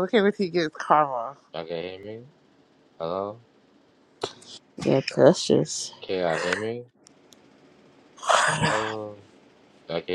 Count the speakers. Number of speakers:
three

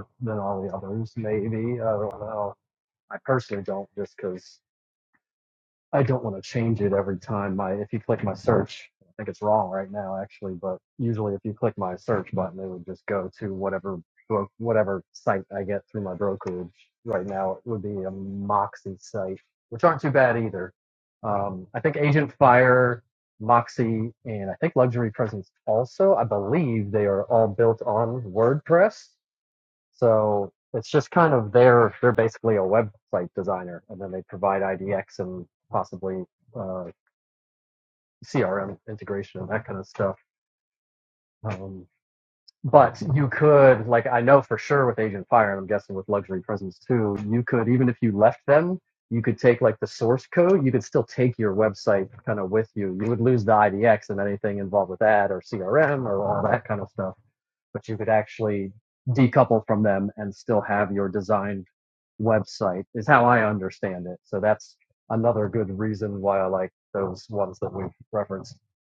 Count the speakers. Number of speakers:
one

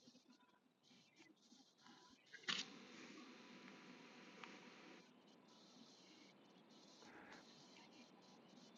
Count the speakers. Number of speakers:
zero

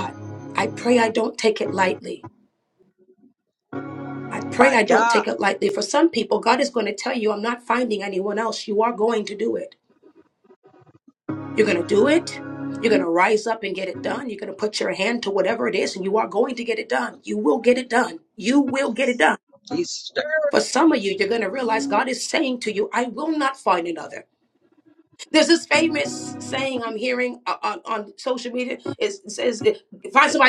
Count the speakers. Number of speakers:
two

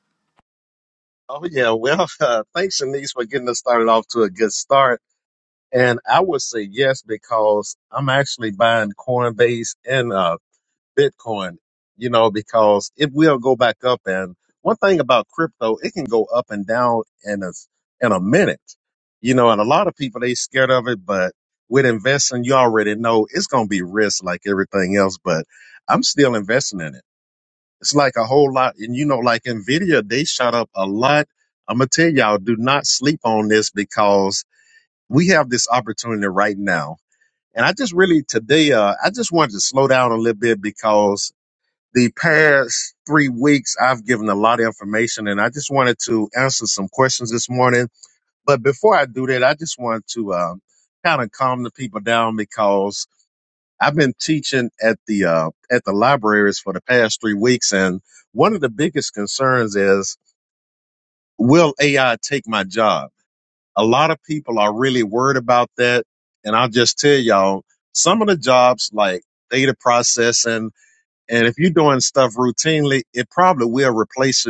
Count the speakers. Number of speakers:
one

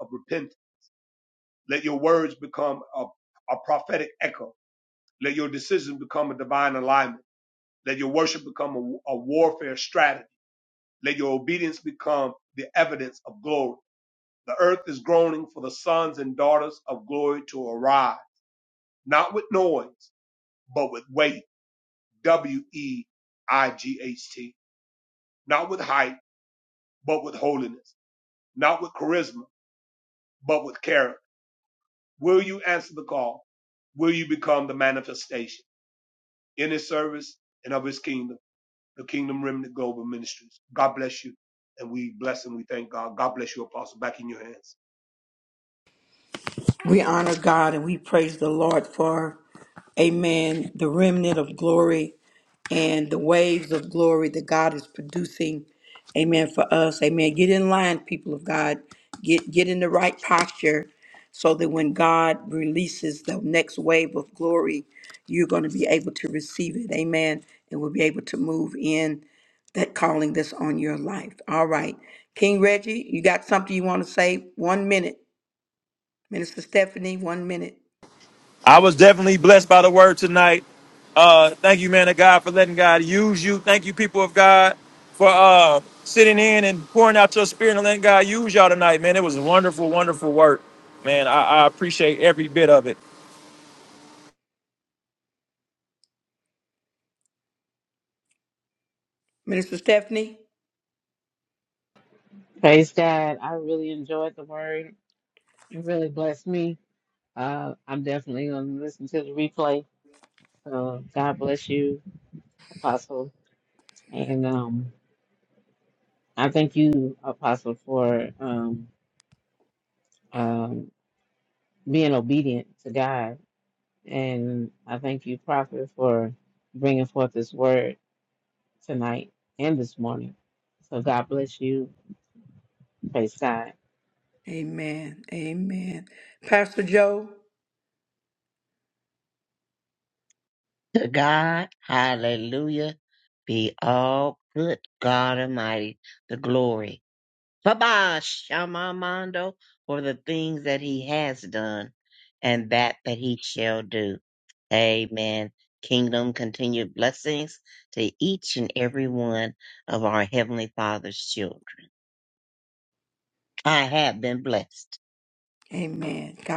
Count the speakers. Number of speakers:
five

